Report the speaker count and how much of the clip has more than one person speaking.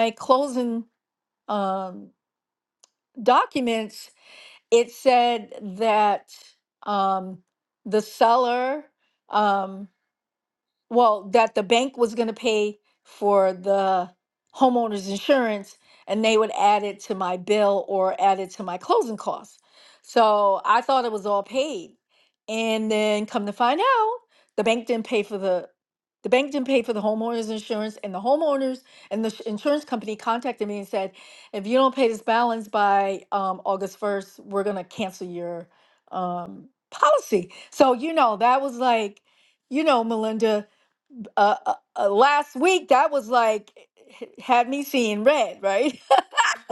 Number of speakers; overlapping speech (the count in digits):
1, no overlap